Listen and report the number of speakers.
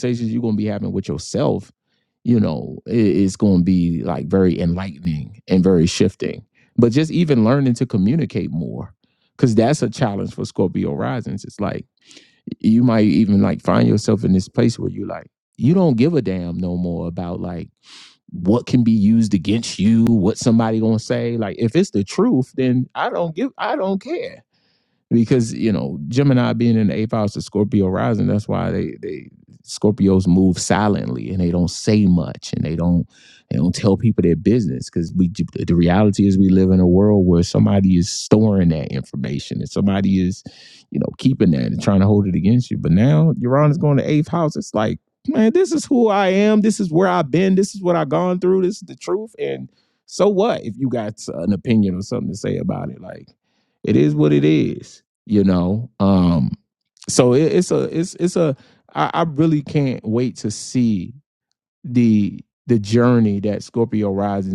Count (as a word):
one